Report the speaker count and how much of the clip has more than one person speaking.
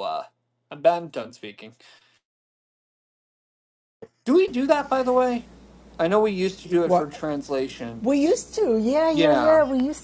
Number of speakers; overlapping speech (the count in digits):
2, about 8%